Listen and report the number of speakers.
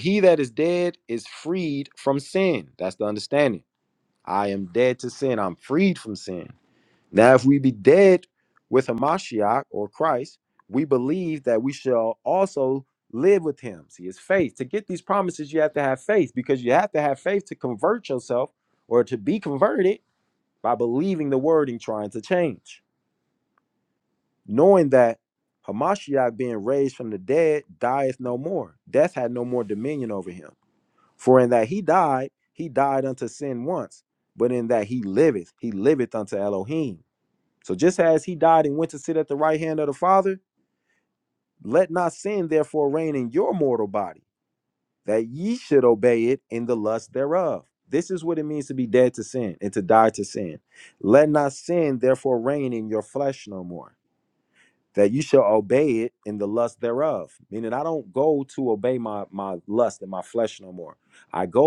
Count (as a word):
one